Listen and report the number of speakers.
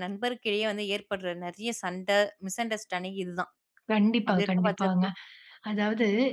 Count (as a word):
two